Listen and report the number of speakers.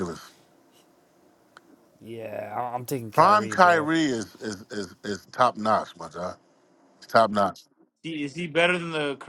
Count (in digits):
3